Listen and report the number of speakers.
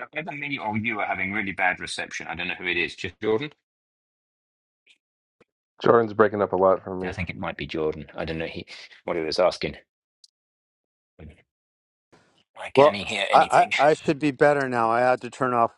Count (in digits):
3